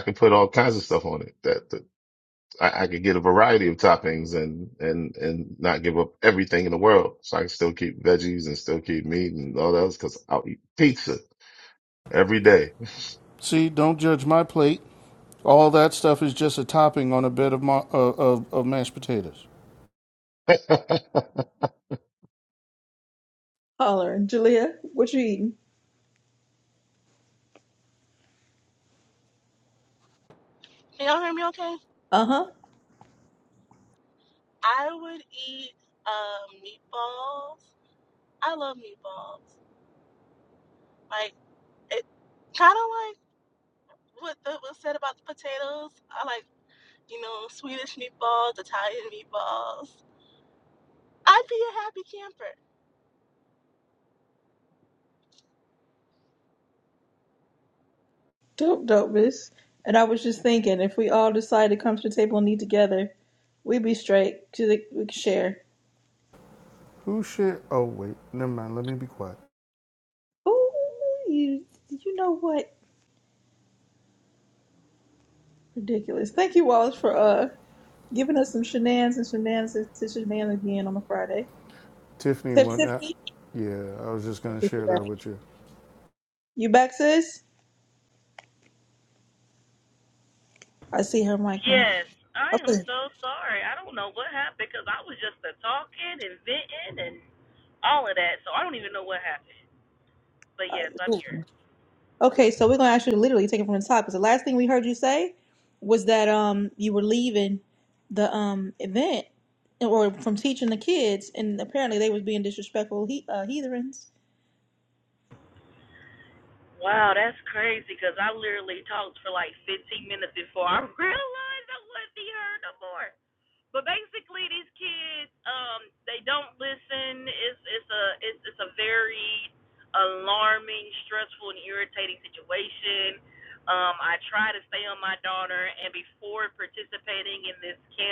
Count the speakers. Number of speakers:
5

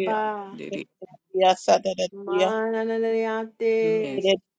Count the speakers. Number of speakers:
3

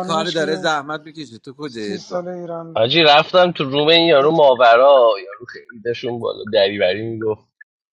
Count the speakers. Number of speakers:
3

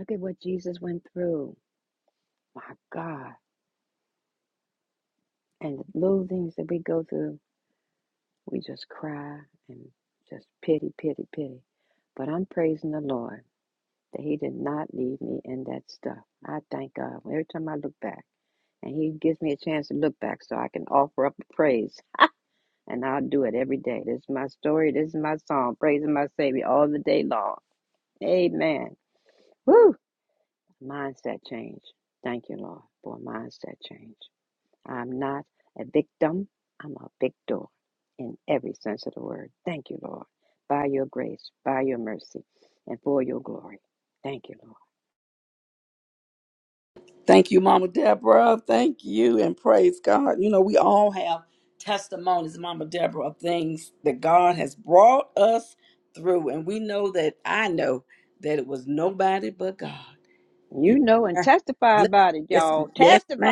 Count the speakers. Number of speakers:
2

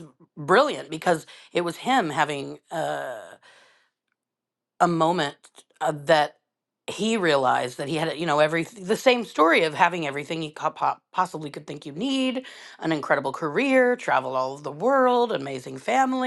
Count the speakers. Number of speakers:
1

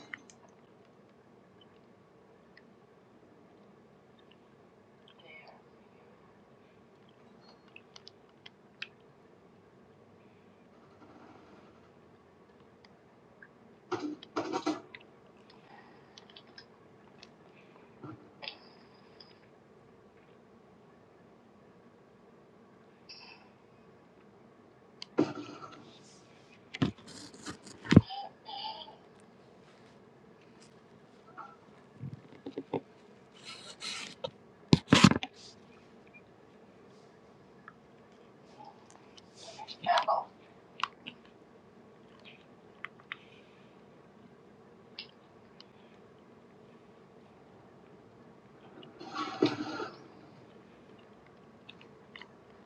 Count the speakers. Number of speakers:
0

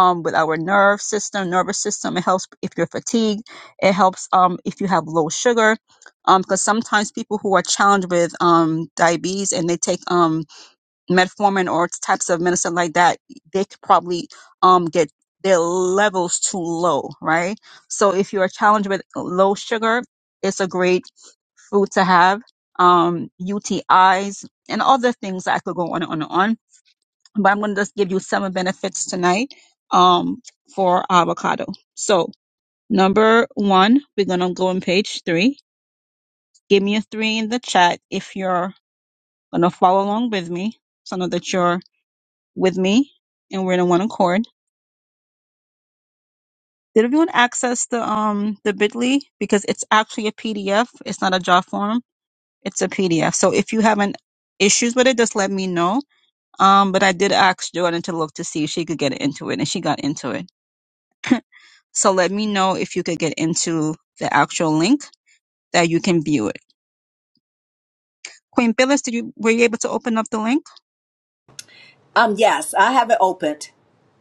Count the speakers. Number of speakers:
2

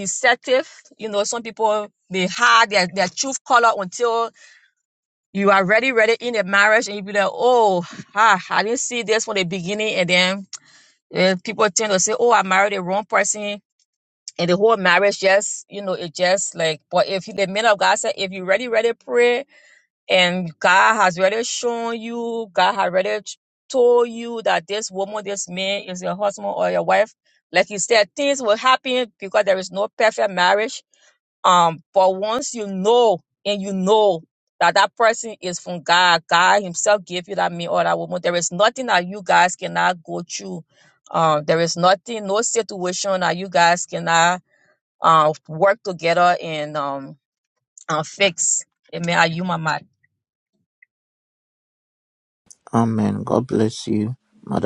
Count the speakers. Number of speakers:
2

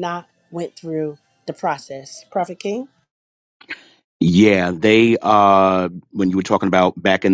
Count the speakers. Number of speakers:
2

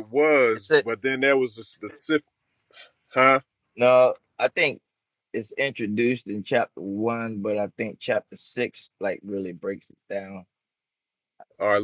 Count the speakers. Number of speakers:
2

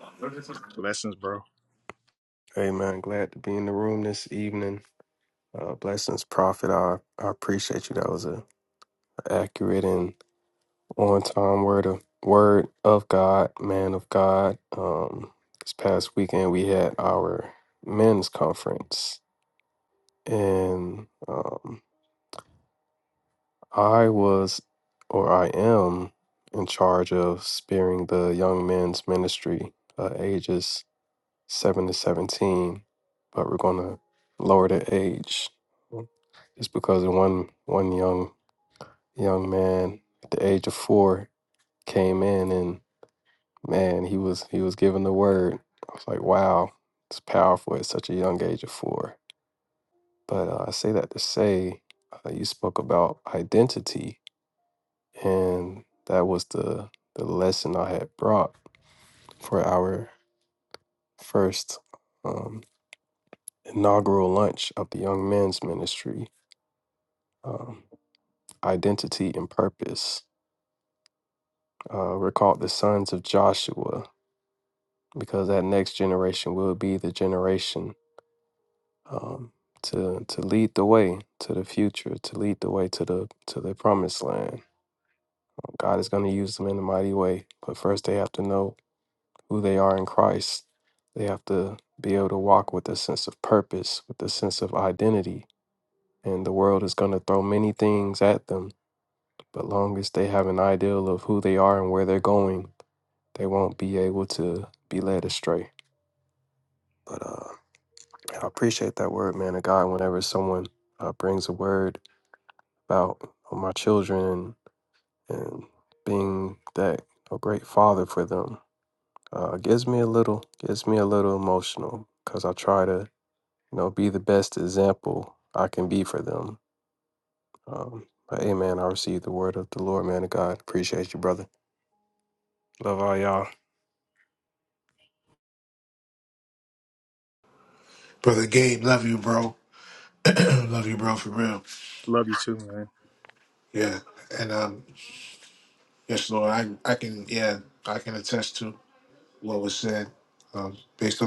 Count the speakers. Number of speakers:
3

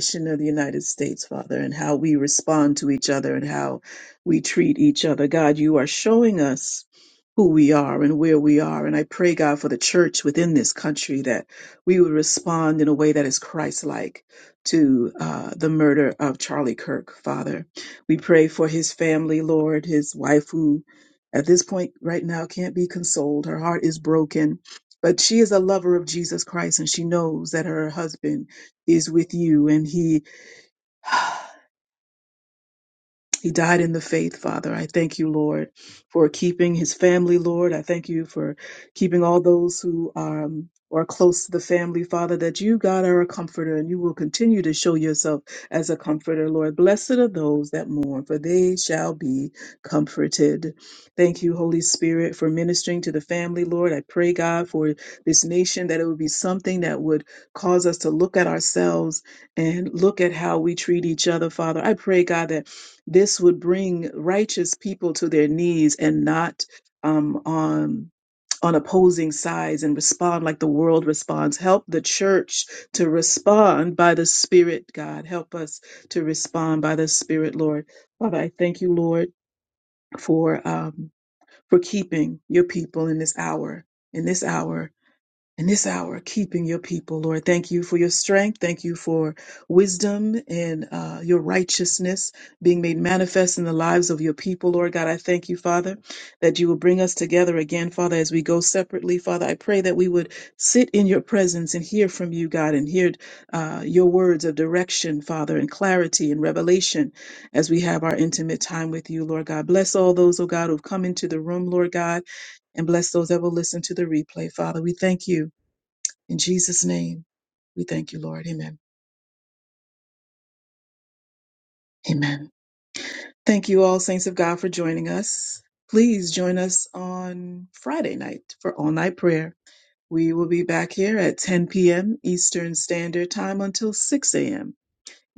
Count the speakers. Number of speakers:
1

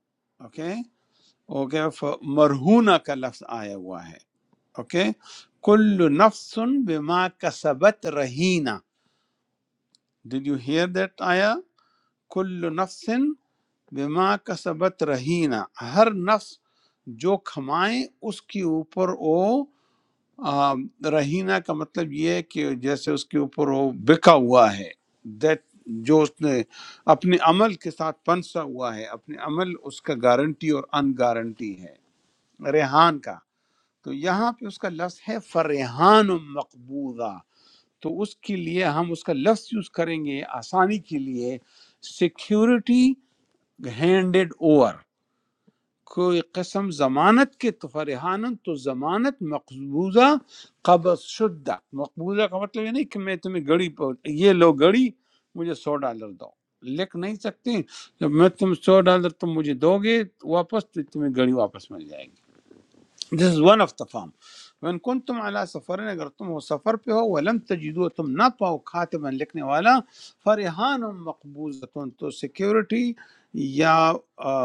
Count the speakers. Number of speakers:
1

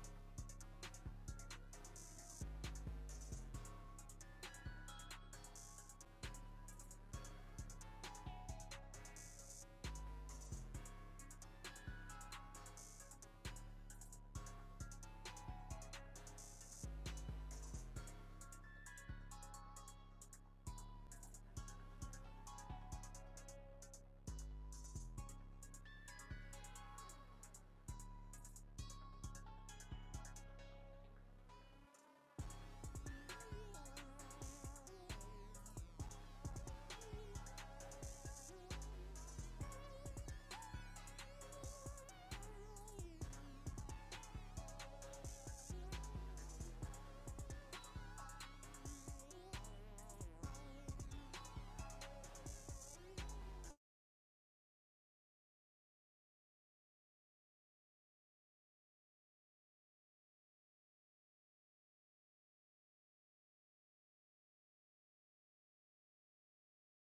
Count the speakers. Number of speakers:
0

